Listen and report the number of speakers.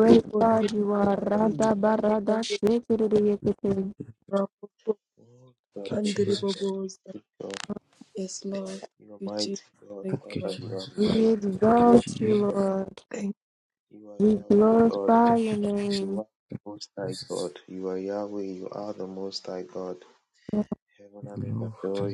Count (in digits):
3